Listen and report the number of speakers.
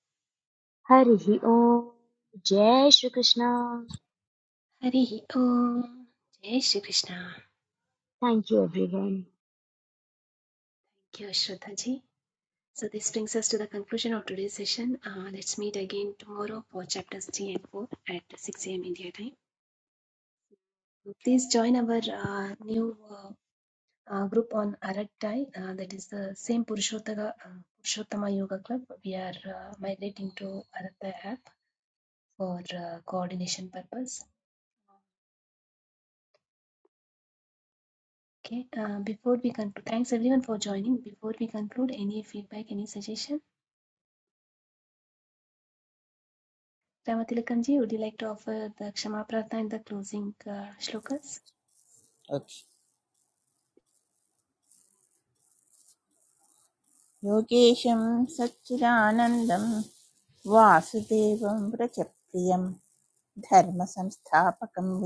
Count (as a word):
three